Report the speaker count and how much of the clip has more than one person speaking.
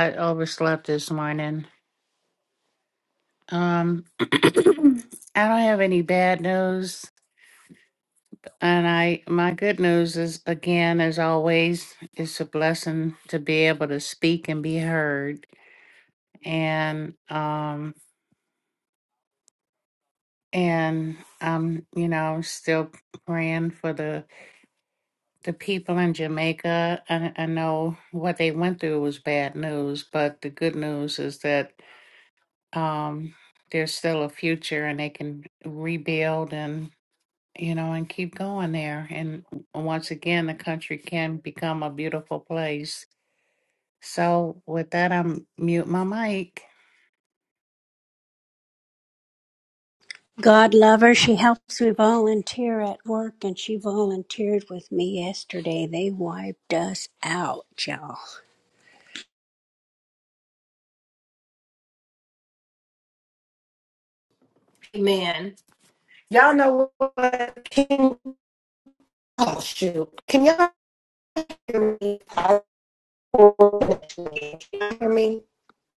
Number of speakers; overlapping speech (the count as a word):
three, no overlap